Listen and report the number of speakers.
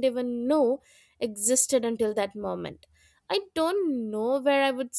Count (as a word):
one